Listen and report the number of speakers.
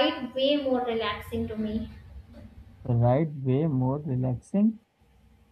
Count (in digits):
2